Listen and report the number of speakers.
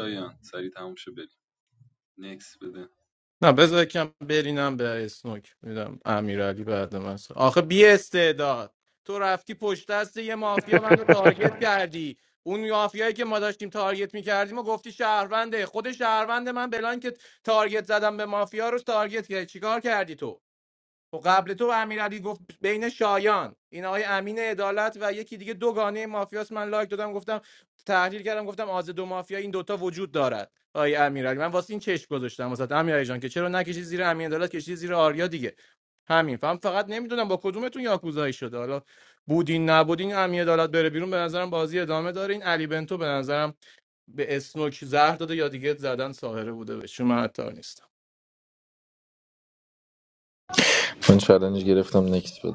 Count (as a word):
three